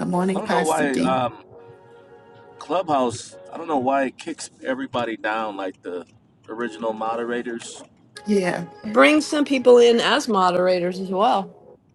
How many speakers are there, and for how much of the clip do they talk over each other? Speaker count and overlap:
3, about 7%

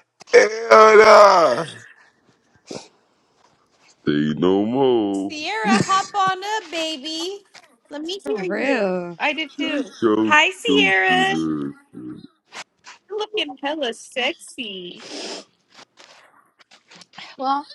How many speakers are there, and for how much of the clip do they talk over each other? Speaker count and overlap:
4, about 10%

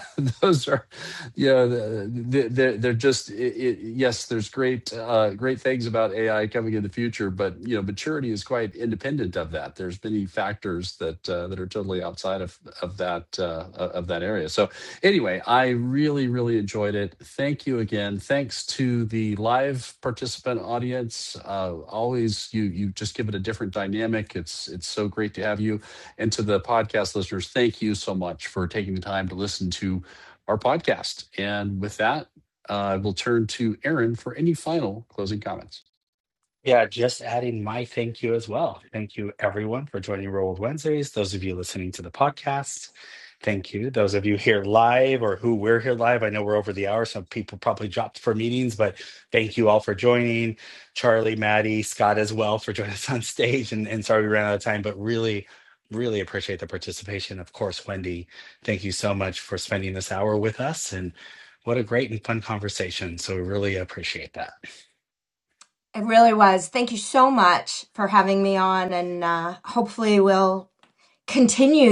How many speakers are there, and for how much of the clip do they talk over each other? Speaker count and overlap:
3, no overlap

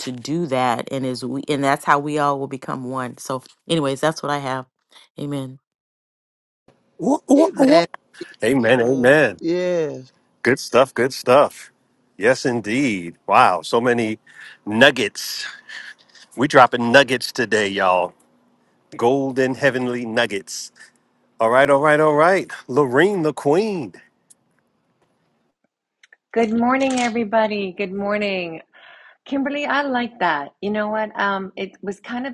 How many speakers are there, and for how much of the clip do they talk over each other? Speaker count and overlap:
4, about 3%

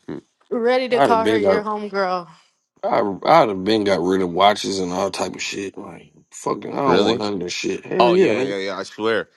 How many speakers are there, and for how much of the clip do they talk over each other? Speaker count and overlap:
3, about 17%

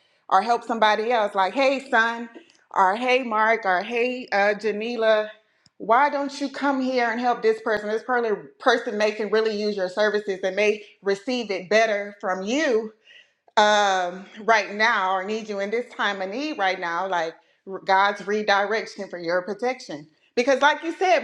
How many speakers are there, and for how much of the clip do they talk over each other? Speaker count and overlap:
1, no overlap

